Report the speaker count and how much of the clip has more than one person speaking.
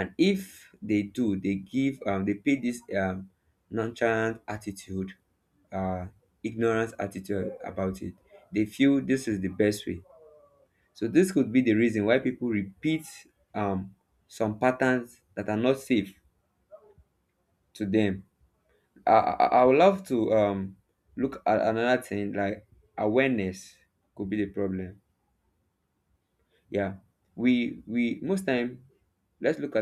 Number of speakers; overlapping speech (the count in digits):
1, no overlap